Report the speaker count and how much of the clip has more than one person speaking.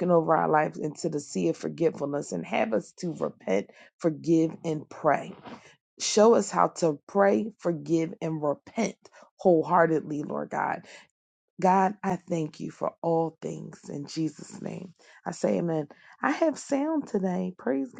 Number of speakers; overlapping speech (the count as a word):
one, no overlap